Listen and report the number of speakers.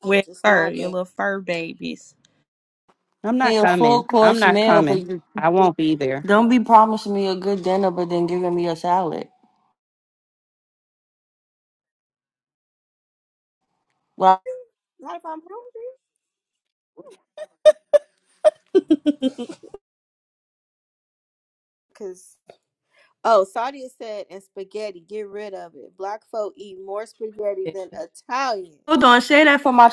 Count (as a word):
four